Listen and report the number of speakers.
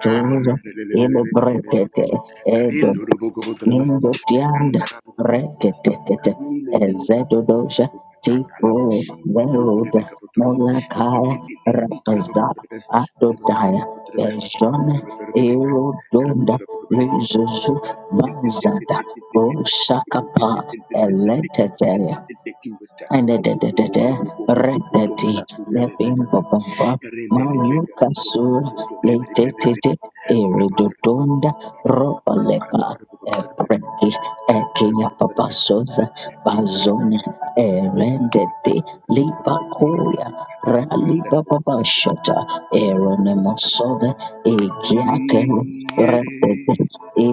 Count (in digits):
2